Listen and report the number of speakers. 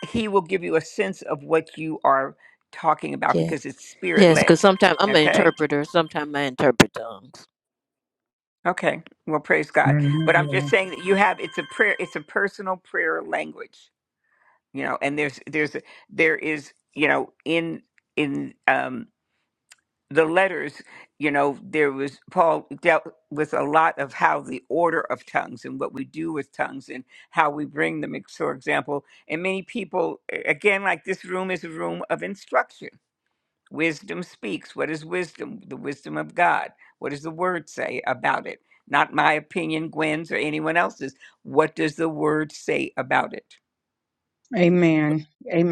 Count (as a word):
three